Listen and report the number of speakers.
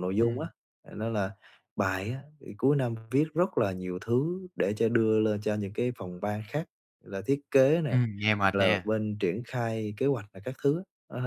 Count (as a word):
two